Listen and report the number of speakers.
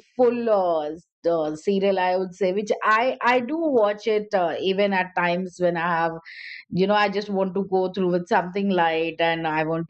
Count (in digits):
1